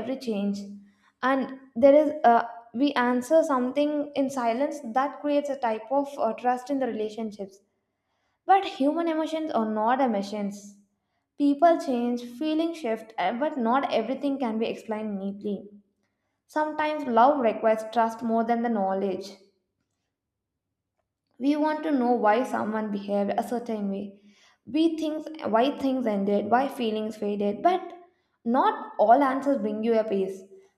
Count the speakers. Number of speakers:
one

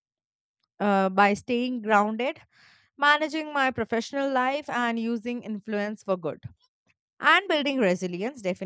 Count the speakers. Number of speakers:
one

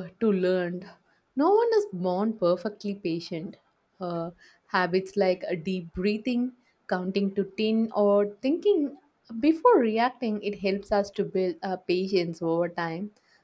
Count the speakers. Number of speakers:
one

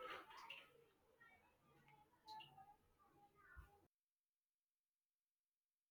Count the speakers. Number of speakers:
zero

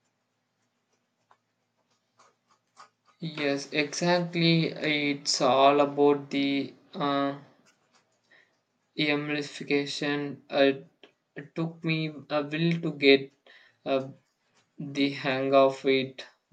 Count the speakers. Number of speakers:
one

